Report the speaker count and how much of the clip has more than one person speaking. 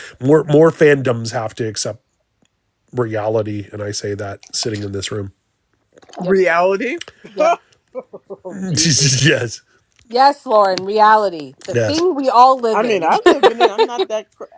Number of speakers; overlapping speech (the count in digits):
3, about 7%